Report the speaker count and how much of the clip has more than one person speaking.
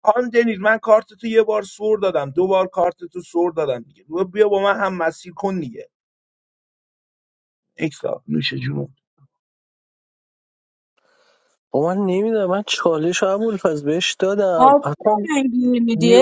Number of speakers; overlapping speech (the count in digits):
3, about 6%